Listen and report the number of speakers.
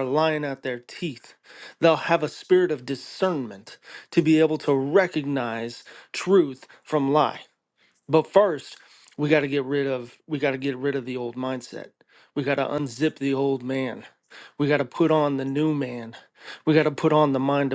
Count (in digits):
1